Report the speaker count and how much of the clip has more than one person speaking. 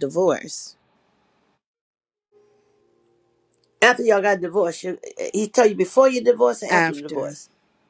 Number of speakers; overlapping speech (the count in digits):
2, about 8%